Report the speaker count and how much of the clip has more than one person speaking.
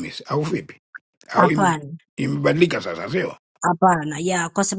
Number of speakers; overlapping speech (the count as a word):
two, about 8%